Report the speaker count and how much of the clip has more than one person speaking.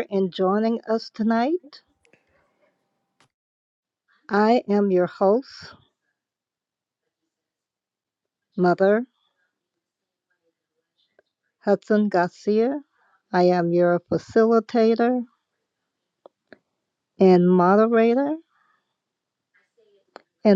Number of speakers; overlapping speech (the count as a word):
one, no overlap